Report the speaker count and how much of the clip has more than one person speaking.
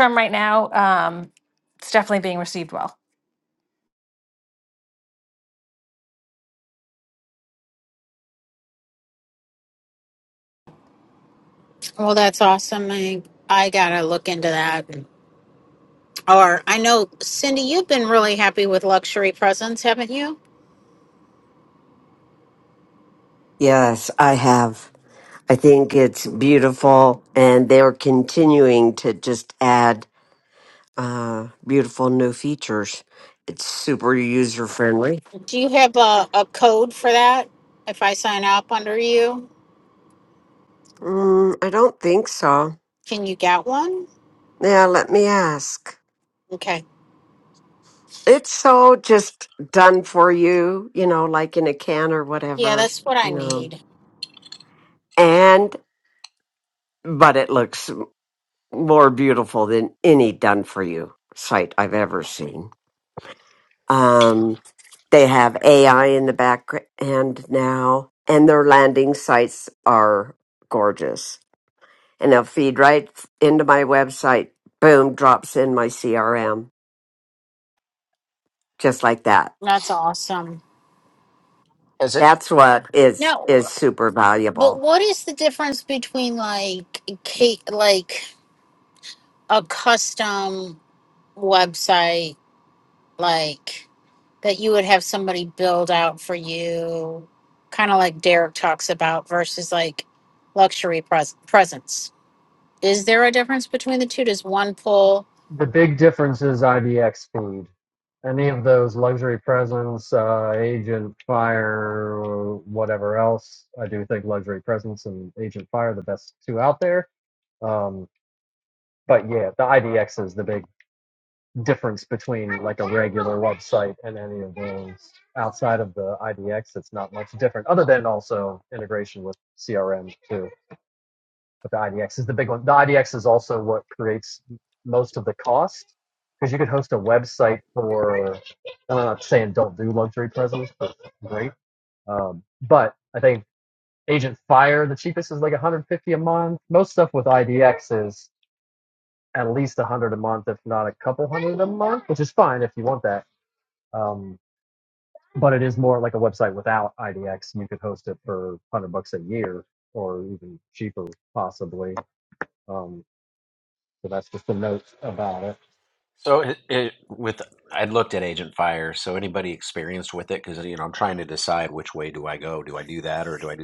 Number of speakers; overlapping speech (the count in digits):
5, about 1%